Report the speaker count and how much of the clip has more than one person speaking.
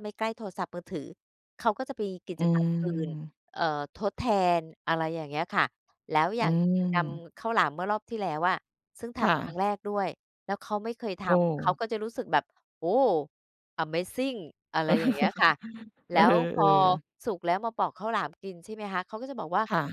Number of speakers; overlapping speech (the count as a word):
two, about 9%